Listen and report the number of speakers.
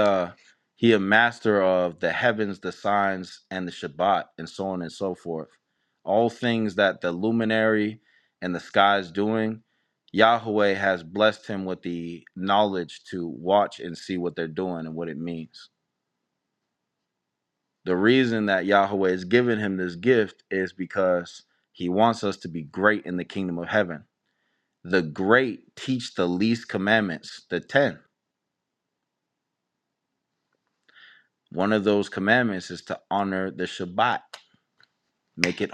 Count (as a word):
one